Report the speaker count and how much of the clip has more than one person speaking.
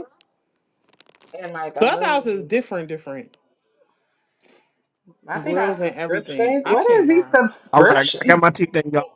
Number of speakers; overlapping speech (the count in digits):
3, about 37%